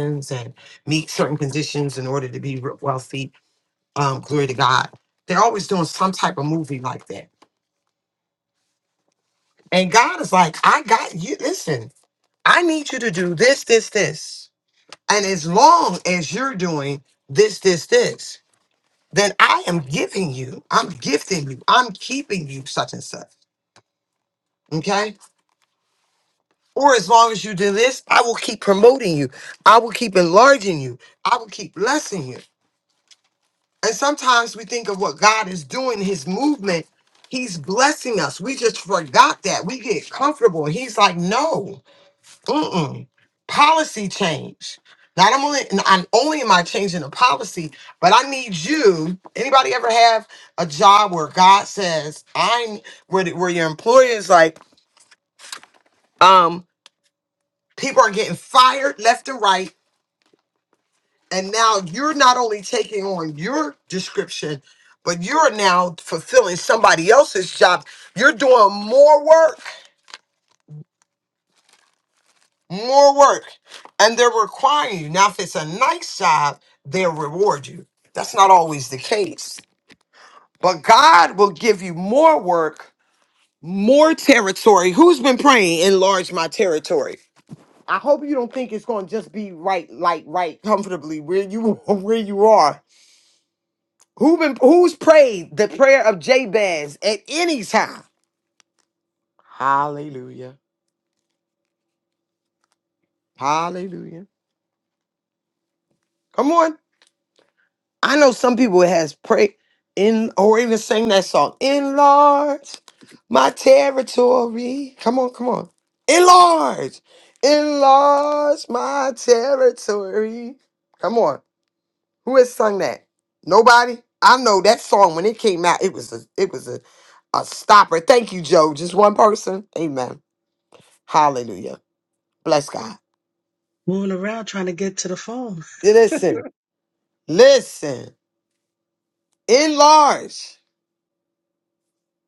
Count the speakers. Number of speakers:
2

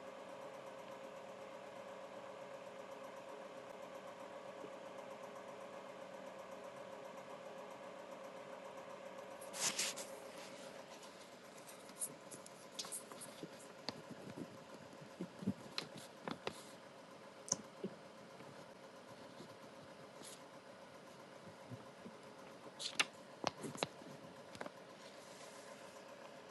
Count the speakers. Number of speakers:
0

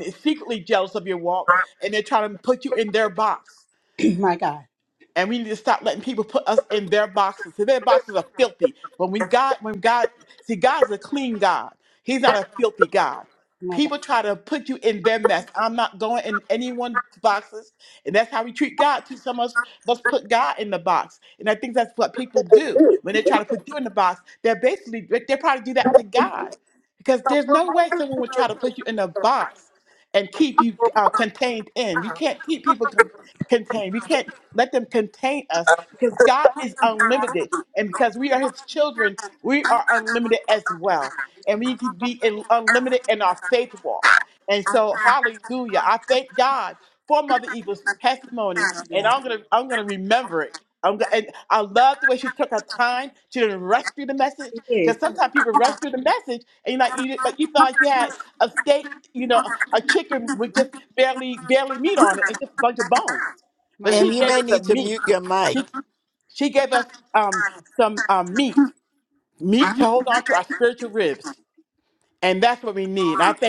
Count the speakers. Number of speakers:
3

